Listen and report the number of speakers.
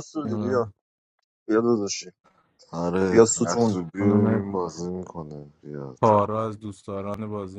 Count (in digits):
3